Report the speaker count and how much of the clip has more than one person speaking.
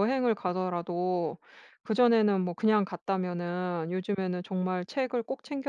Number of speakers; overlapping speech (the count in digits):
1, no overlap